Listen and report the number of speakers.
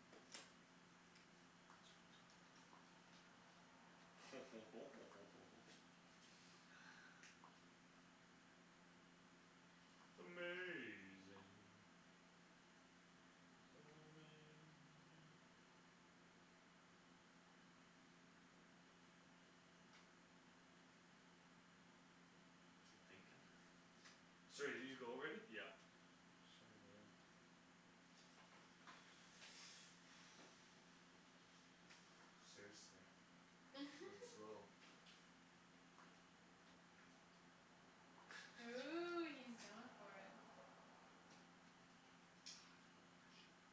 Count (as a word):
three